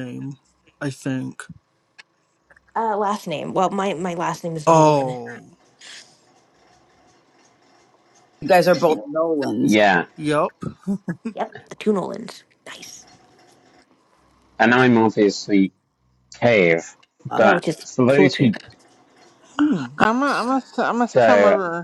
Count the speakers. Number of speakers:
5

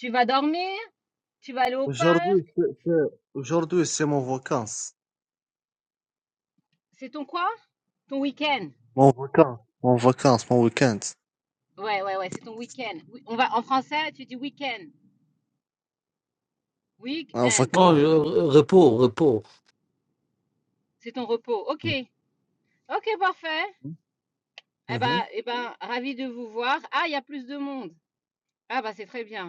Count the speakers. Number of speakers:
3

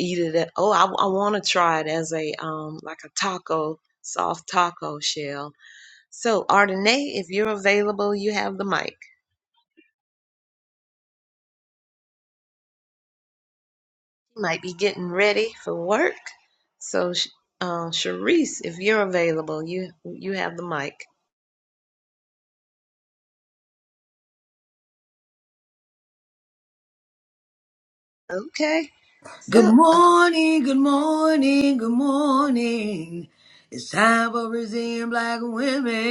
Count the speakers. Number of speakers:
2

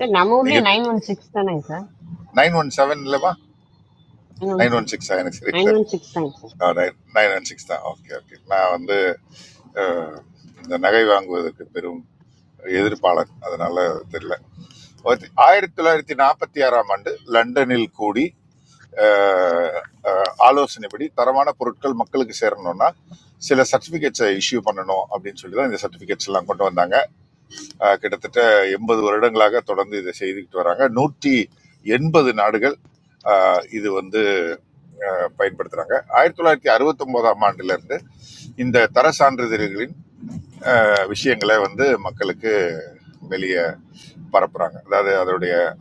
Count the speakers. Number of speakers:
2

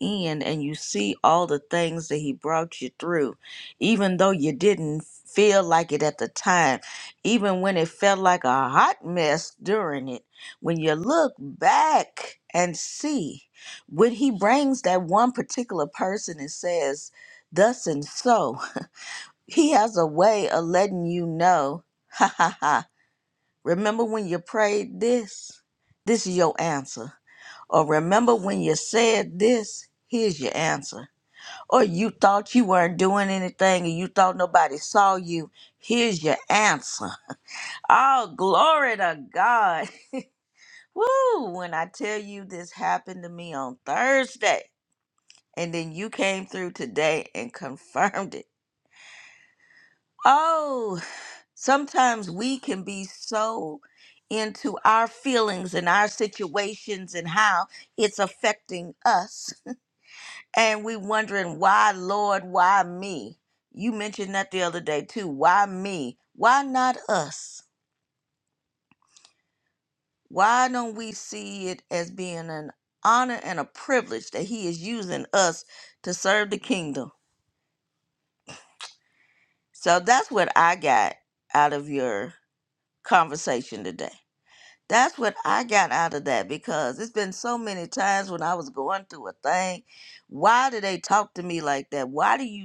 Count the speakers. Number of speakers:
1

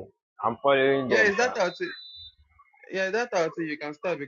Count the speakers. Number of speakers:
2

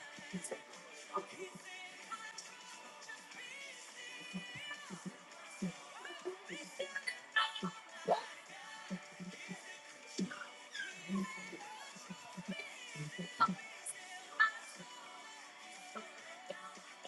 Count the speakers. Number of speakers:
0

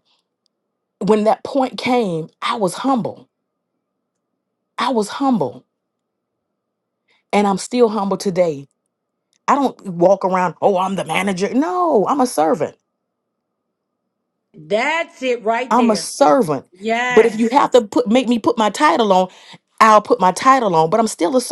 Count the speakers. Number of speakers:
2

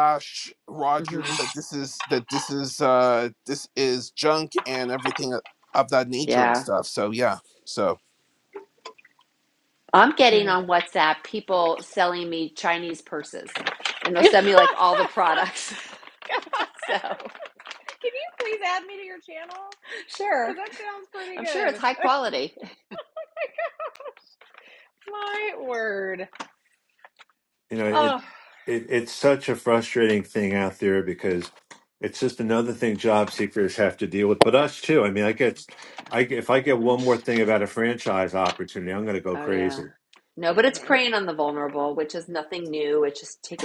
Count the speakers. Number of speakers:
4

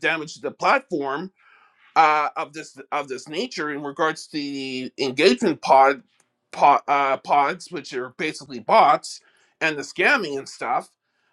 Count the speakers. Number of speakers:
1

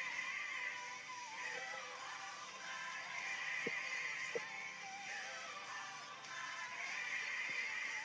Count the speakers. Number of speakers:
0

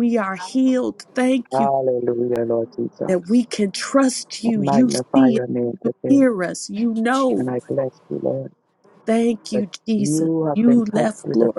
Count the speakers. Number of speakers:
2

